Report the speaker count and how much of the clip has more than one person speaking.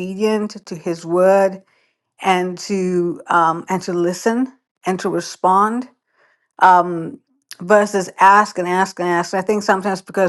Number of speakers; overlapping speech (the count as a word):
one, no overlap